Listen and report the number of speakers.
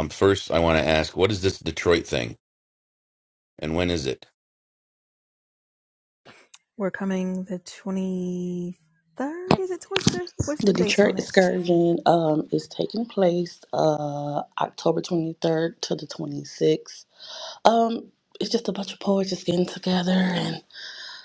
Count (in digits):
3